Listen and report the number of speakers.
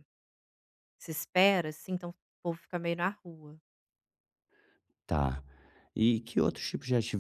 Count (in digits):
2